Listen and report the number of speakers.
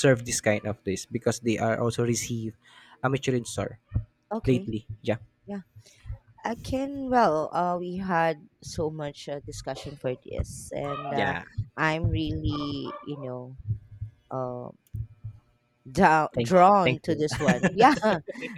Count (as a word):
two